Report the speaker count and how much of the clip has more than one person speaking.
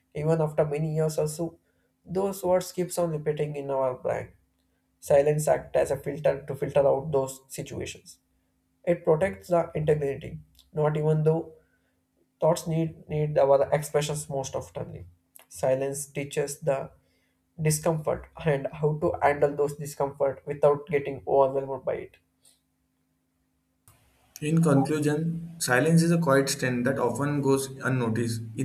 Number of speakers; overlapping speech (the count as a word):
two, no overlap